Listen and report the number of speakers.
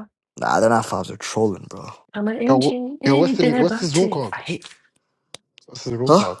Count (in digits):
3